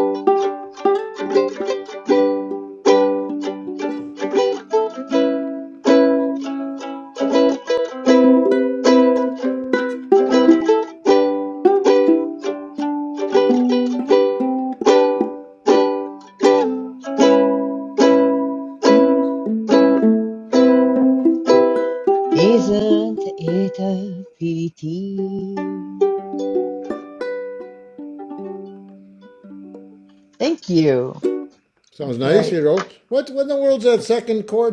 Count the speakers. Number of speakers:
two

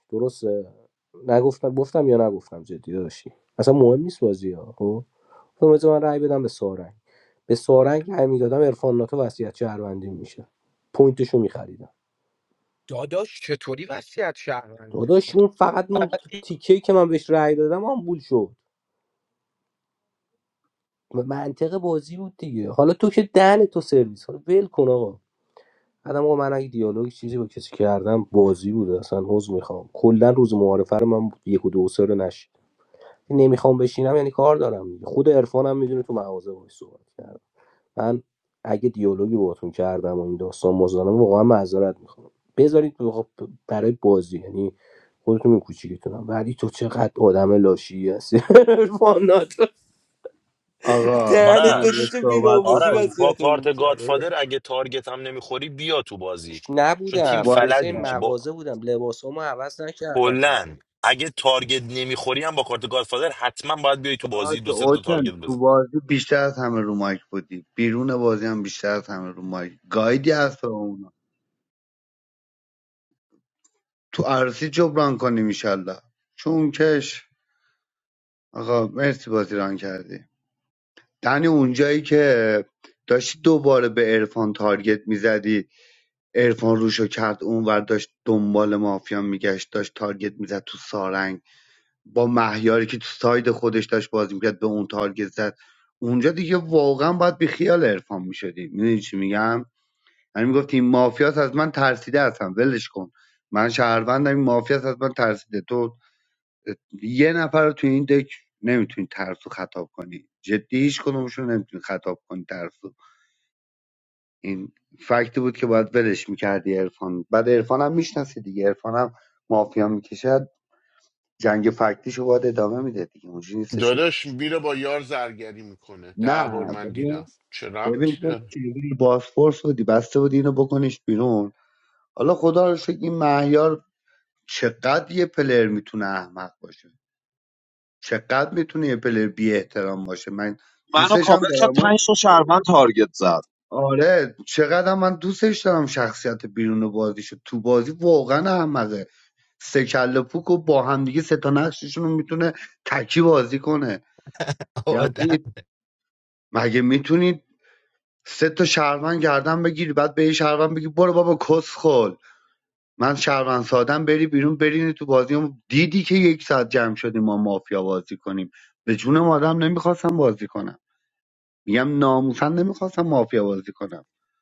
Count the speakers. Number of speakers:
six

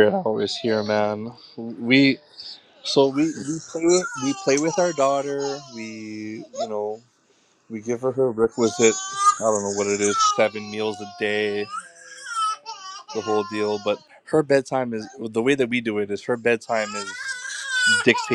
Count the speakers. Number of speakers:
one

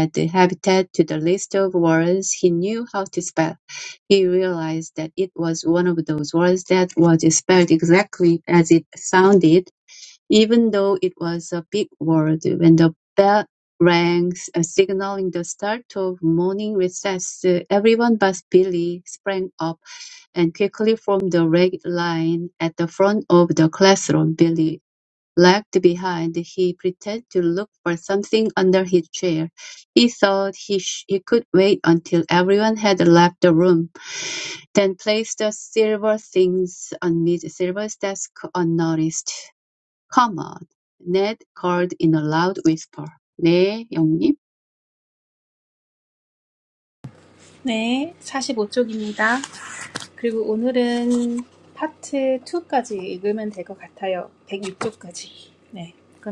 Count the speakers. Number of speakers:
two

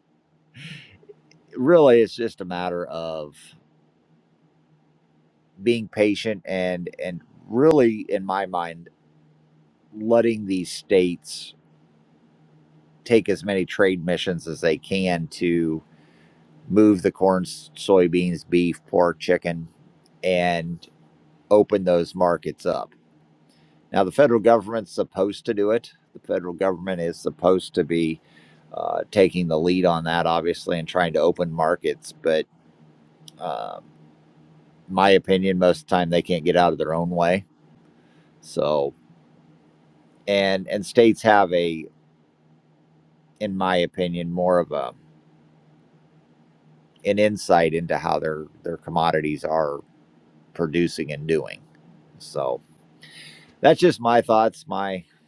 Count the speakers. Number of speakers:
one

